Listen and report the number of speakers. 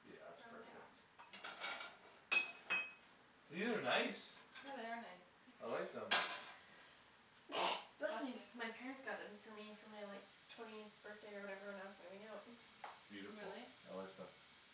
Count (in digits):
3